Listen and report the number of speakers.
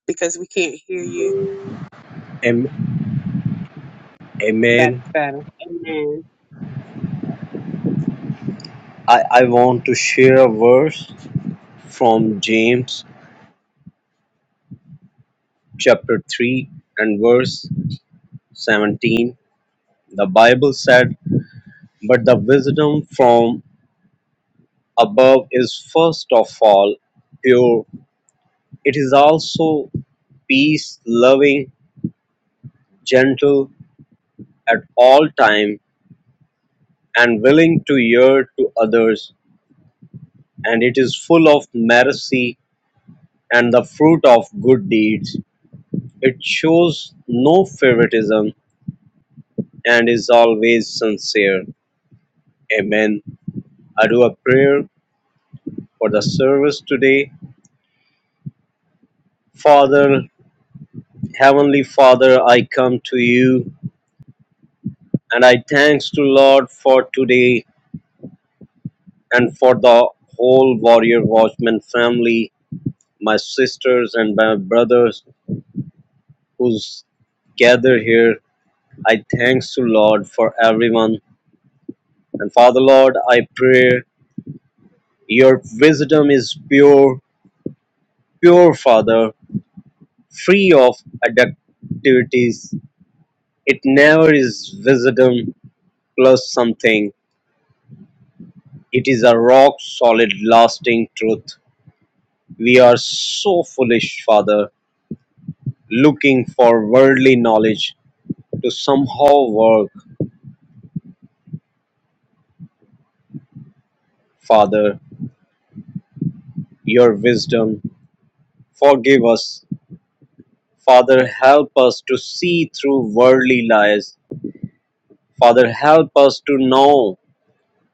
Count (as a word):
two